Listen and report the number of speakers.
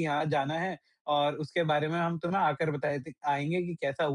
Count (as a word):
one